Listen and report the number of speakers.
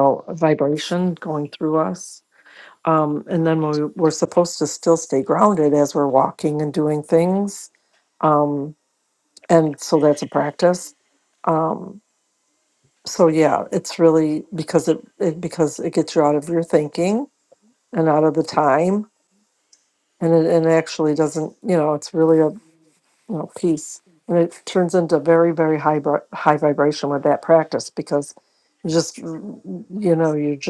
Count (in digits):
1